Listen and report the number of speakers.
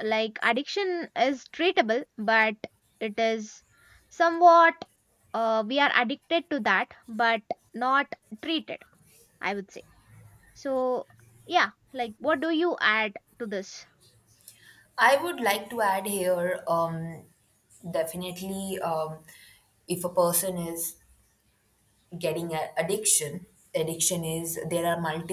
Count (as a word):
two